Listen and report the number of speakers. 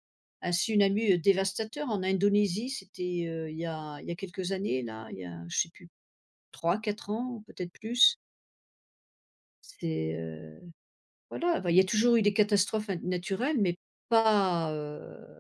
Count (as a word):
one